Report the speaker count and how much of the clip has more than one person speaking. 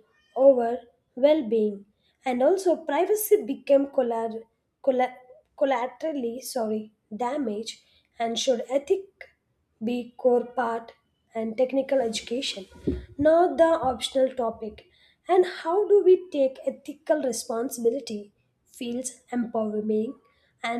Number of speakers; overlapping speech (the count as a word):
one, no overlap